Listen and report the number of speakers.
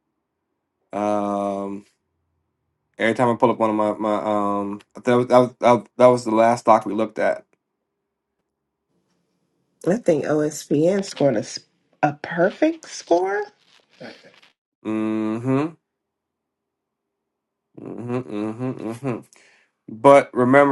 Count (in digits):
2